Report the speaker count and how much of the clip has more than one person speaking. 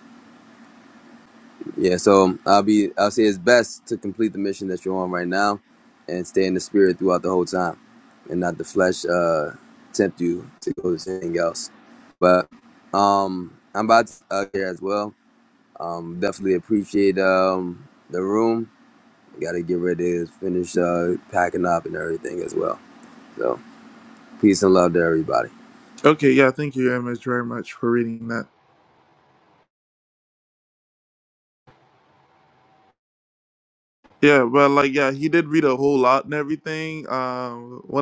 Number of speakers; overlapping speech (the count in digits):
2, no overlap